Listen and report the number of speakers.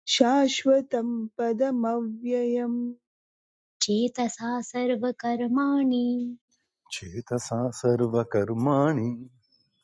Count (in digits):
3